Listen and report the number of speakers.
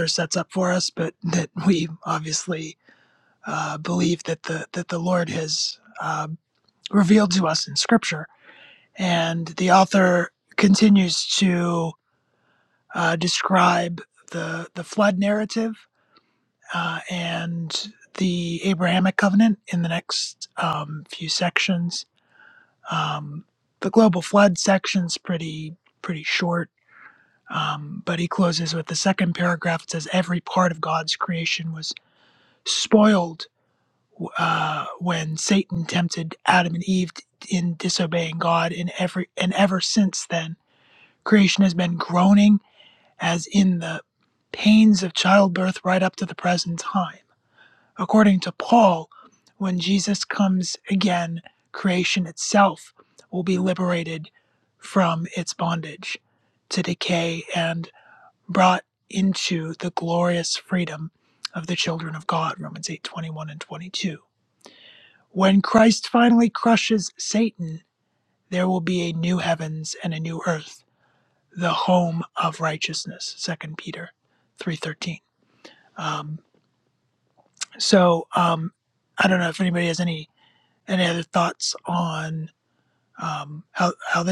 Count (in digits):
1